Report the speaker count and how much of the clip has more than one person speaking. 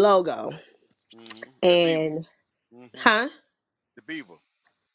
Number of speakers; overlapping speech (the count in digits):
2, about 11%